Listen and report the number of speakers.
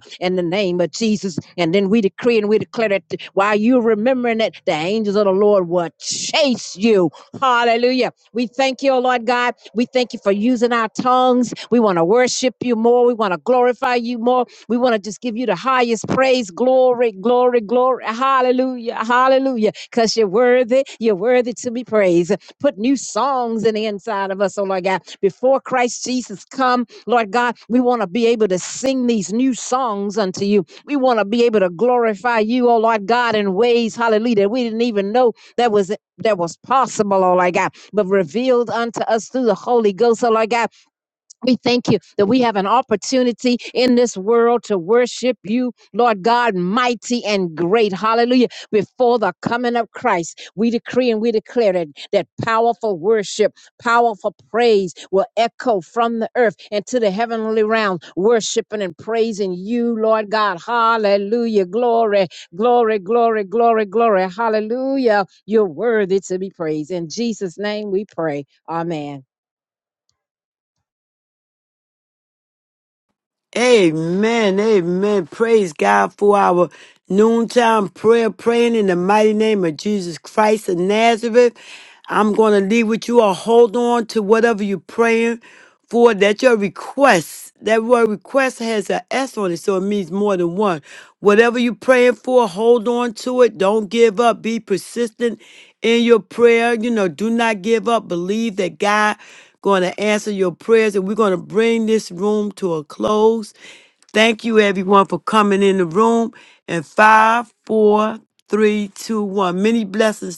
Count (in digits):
2